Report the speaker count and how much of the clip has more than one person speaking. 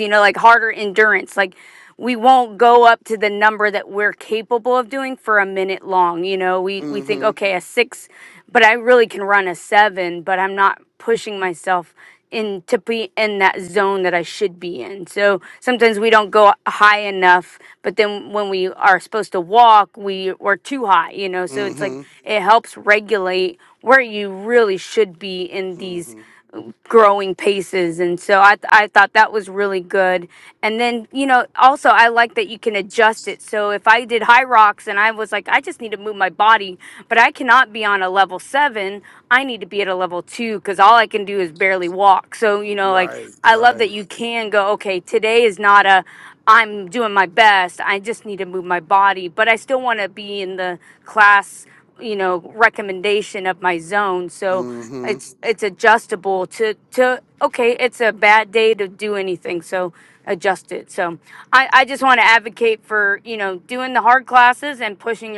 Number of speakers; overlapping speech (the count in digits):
2, about 4%